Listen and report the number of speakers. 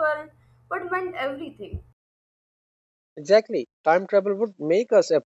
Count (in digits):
2